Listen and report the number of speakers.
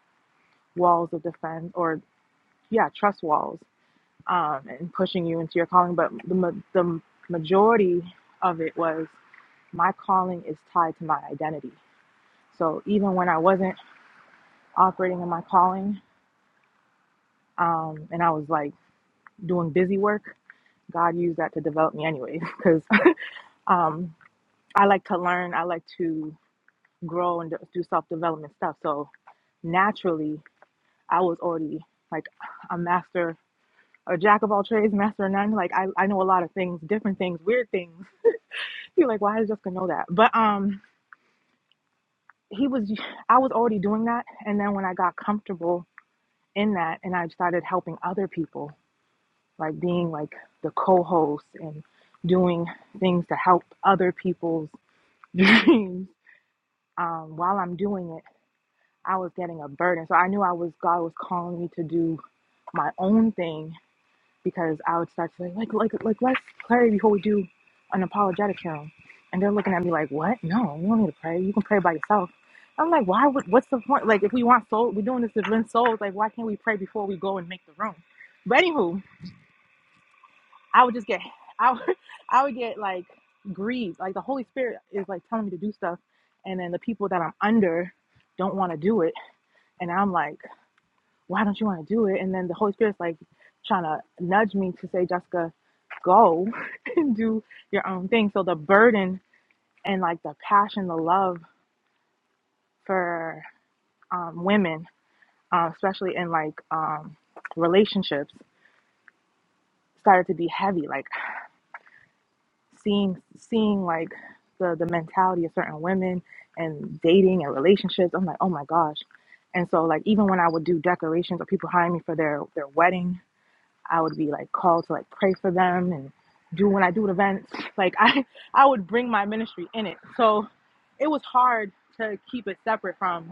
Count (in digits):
1